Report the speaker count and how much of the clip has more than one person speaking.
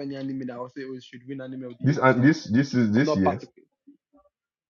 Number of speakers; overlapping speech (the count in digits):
2, about 19%